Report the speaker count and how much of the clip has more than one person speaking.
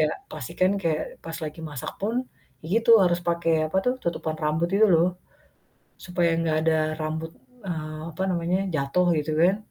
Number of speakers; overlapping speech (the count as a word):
one, no overlap